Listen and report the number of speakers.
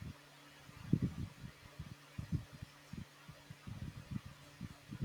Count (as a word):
zero